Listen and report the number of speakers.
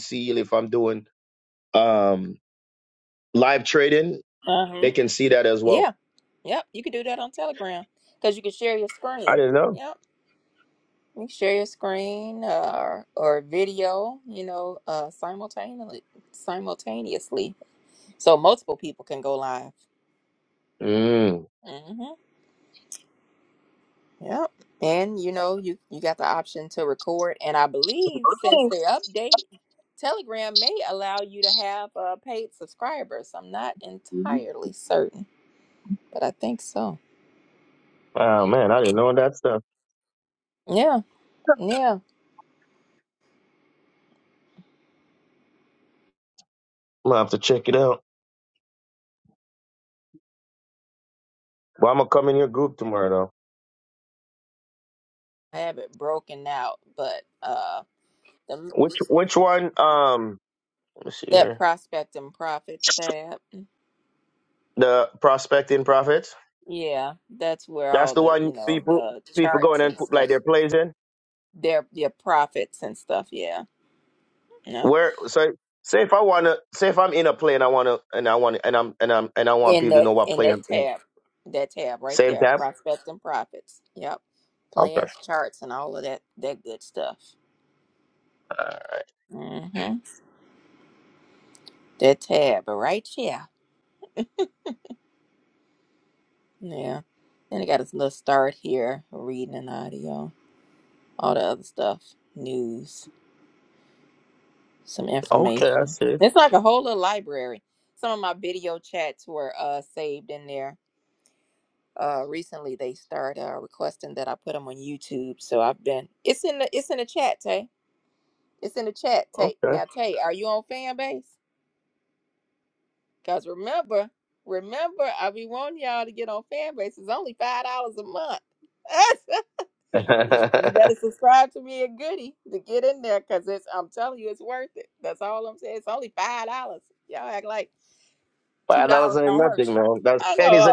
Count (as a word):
two